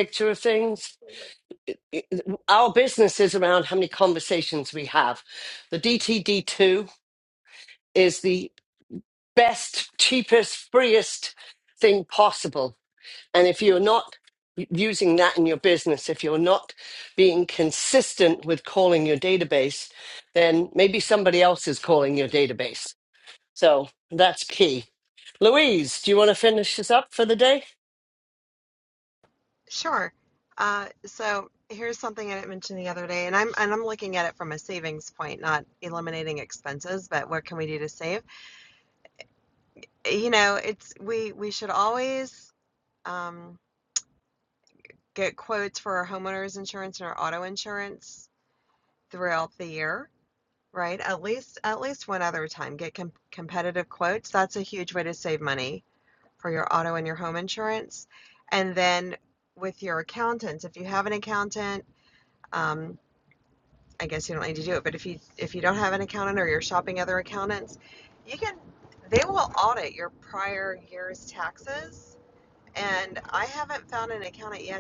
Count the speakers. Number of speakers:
2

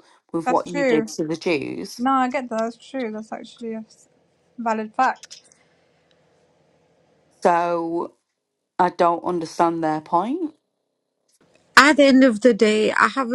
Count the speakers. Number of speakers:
3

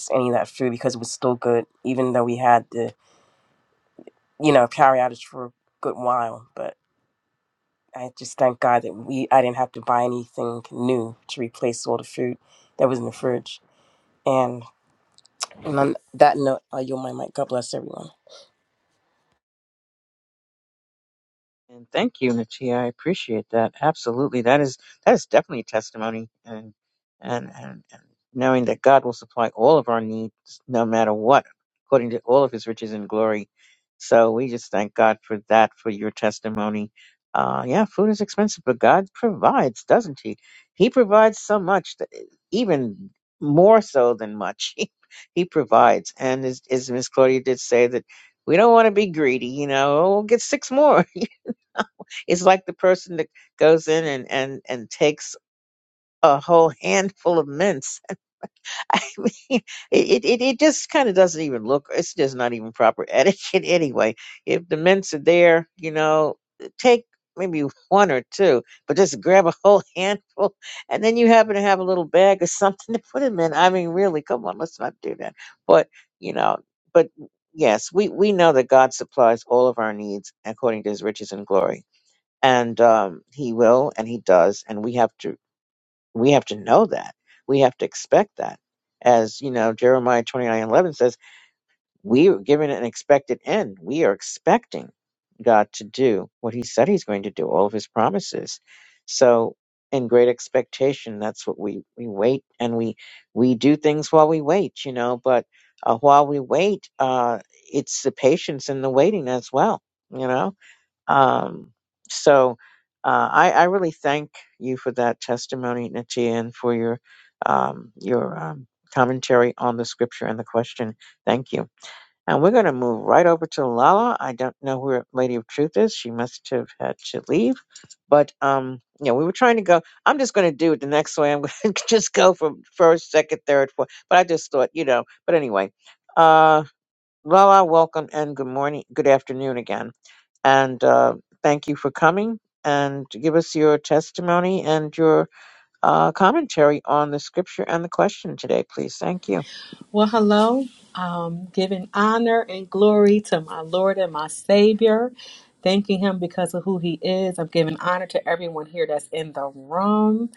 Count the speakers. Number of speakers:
3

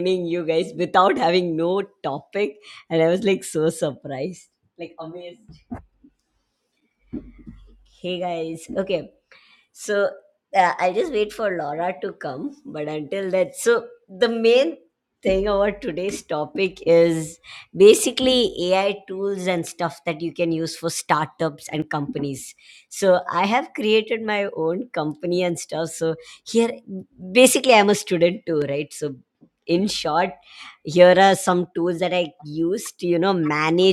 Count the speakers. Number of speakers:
1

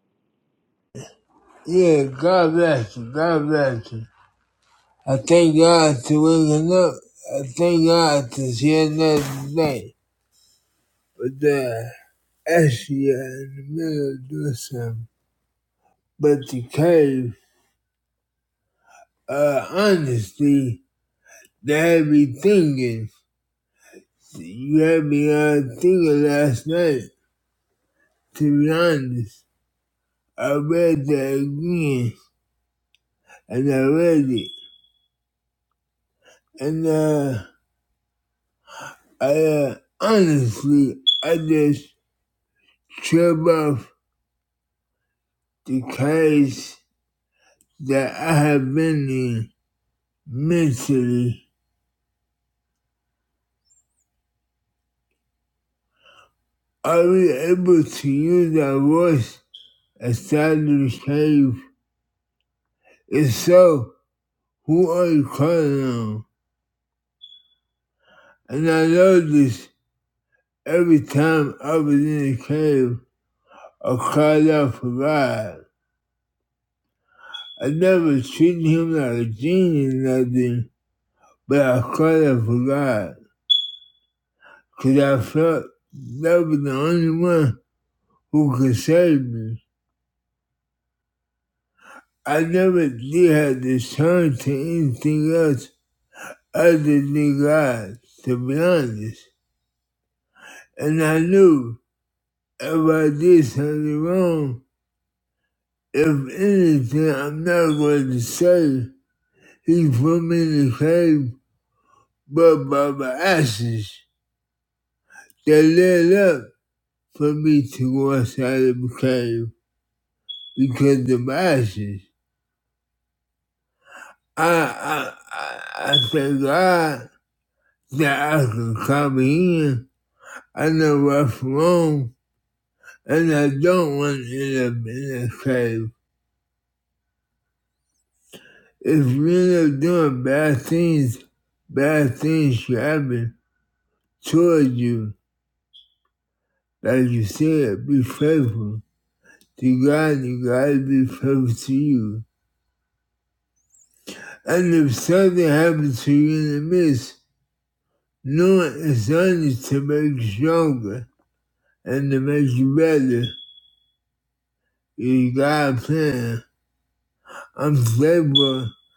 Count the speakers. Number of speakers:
1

